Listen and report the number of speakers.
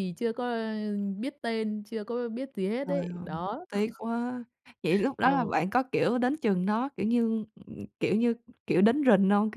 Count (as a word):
two